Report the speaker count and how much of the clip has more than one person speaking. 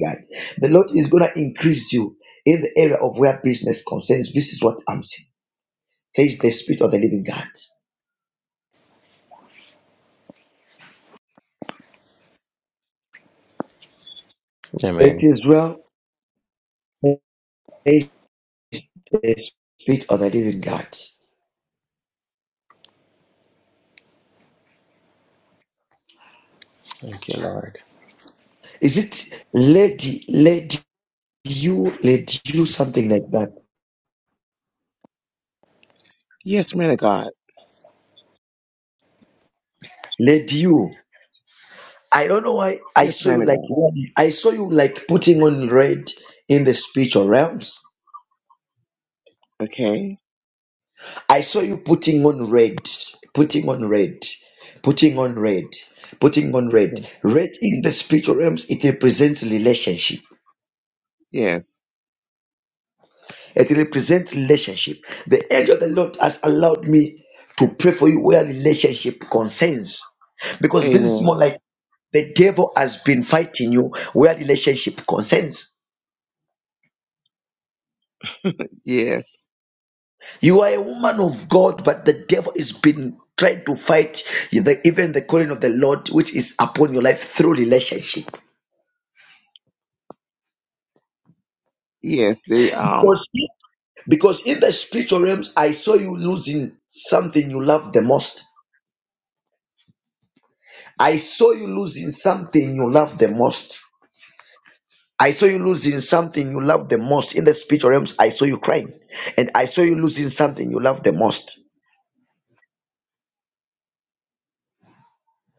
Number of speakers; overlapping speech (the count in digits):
3, about 1%